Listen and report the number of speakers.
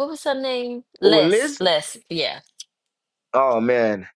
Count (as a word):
two